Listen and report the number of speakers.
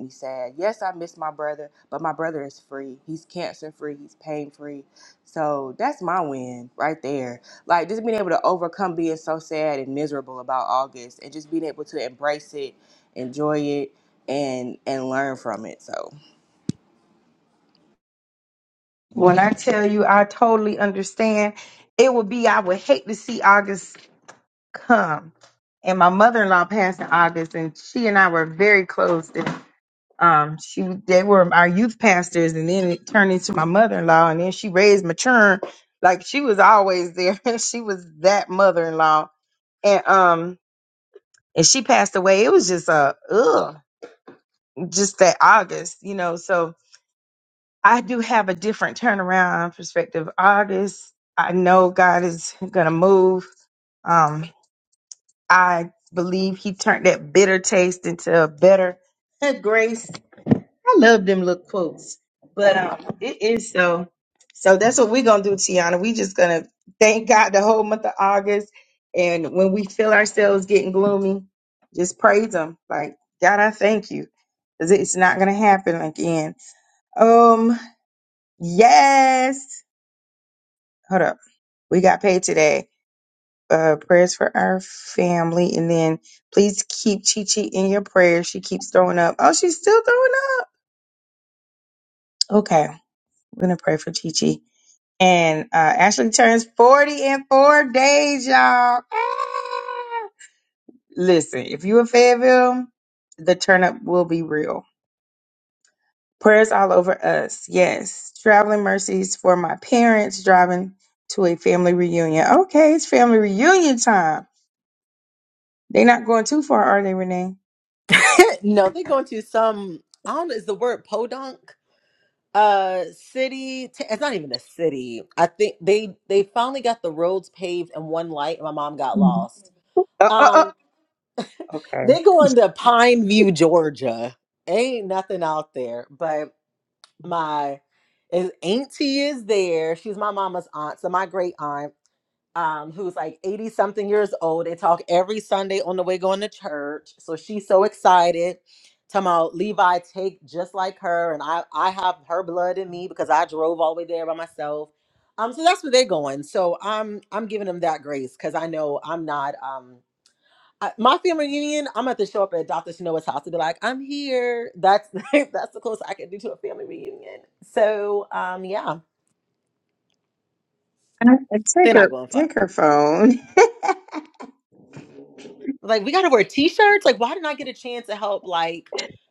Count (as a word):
three